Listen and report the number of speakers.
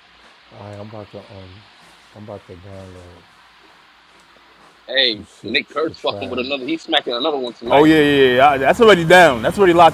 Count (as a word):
three